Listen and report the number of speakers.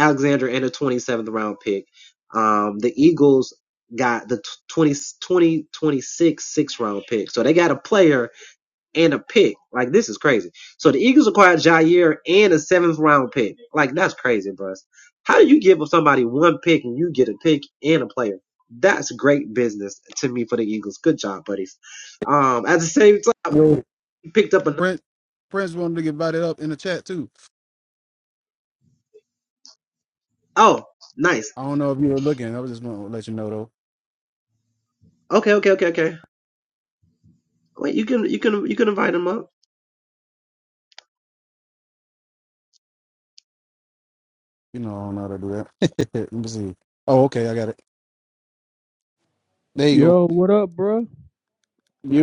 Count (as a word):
three